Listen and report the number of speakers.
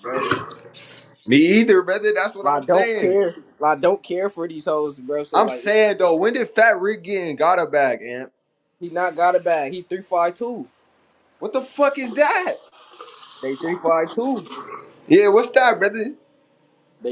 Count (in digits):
2